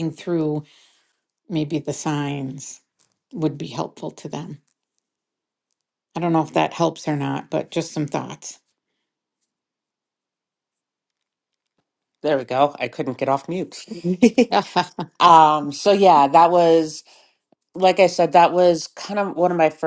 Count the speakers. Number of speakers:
two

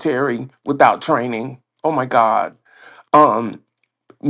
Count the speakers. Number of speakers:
one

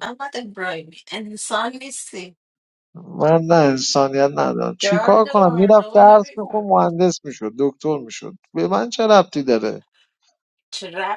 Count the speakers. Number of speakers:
two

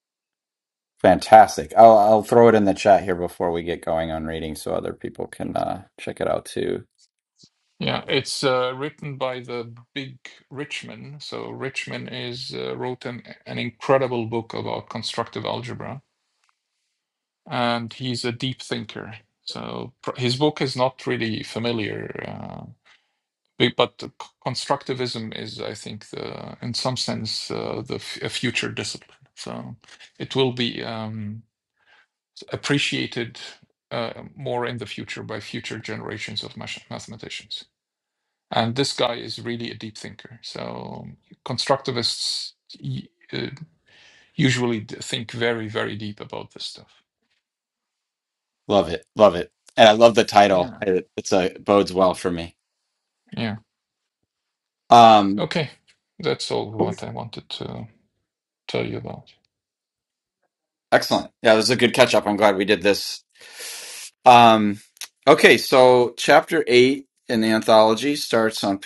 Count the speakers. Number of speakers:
two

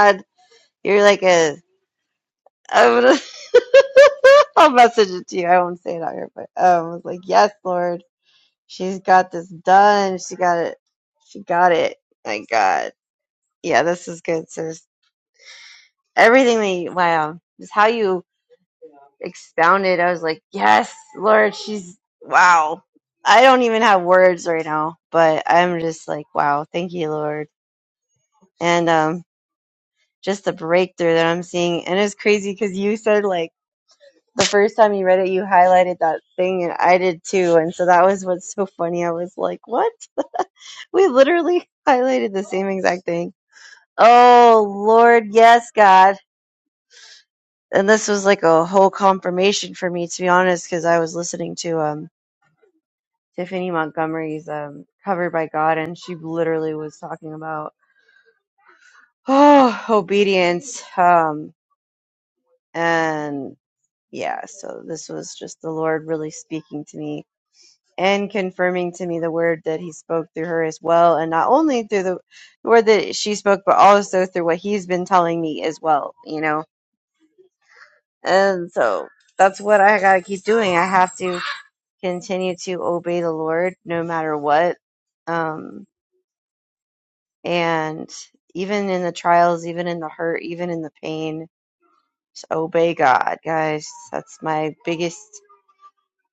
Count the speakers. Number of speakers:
one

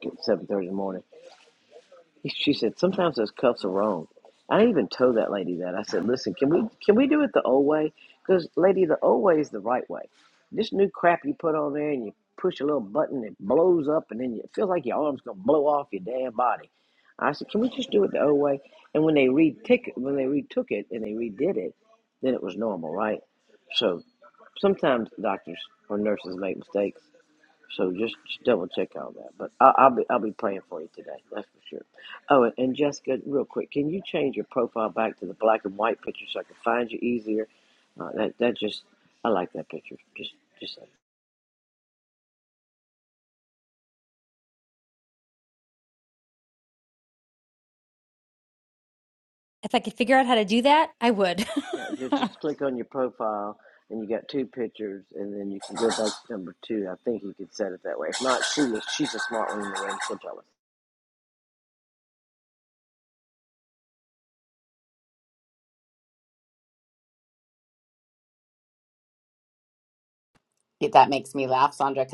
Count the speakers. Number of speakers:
three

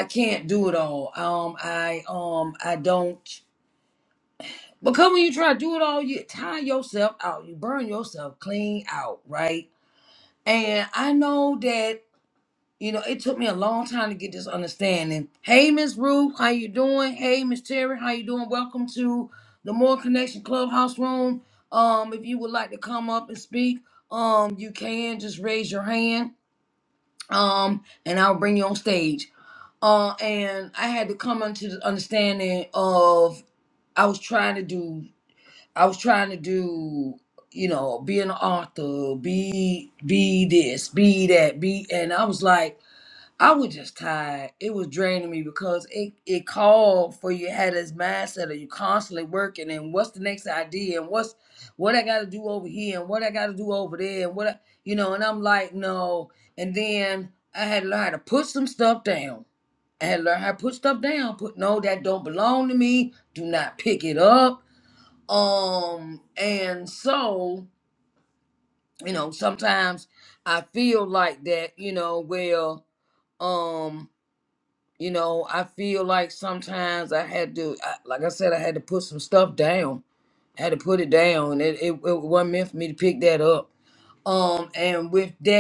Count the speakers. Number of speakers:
one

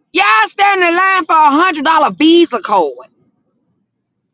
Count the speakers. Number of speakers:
one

